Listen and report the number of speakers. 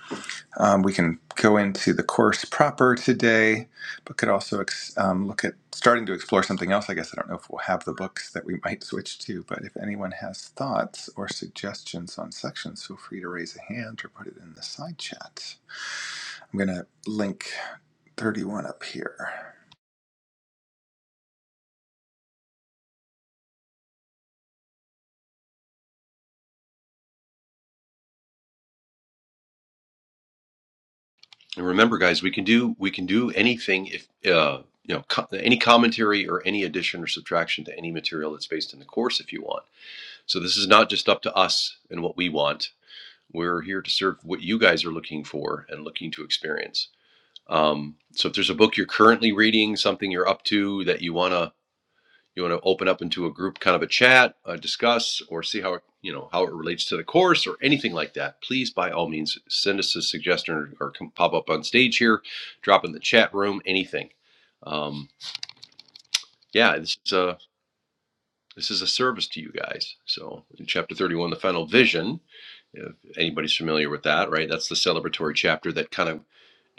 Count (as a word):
two